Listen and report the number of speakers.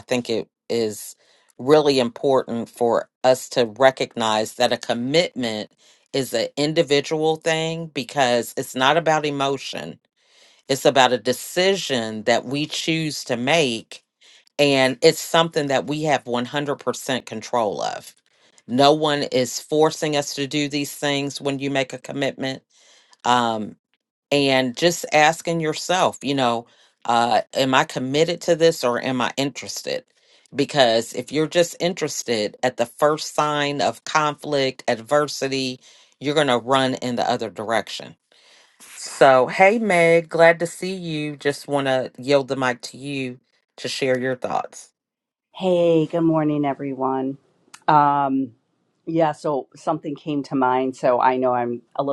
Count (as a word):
two